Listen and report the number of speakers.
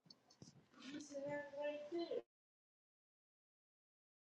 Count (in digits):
0